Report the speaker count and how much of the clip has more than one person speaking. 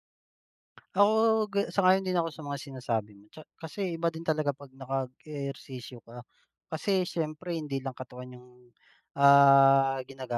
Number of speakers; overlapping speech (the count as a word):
one, no overlap